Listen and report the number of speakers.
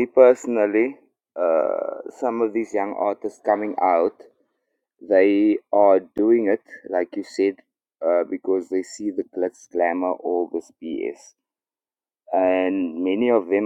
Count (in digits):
1